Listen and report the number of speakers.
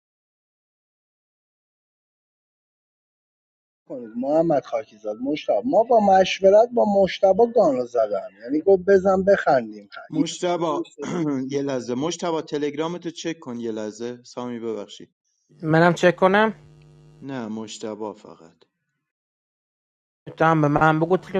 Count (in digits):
3